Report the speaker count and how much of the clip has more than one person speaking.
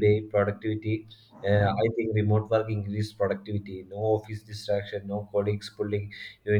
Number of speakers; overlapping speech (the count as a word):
one, no overlap